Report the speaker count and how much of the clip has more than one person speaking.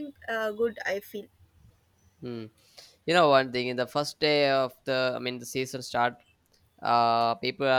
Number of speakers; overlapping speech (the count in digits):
2, no overlap